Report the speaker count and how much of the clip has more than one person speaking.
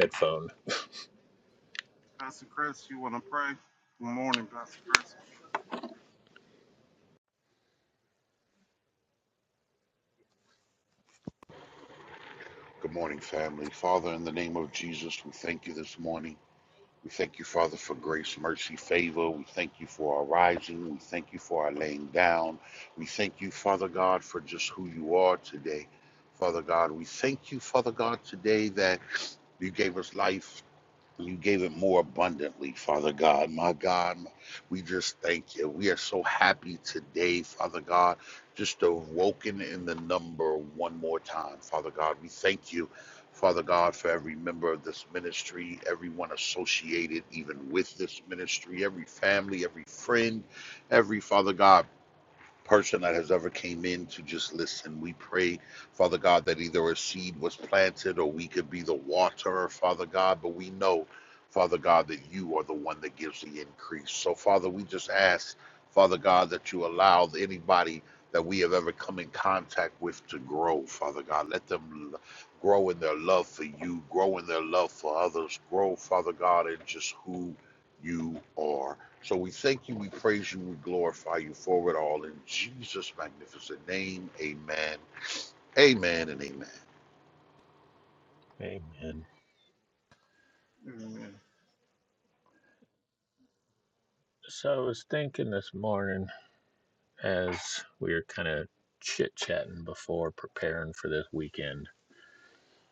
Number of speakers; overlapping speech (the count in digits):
3, no overlap